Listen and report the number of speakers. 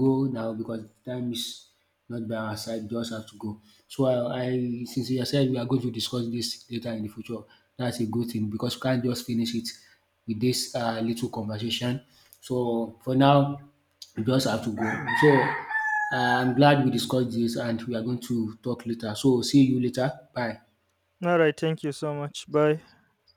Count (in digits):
2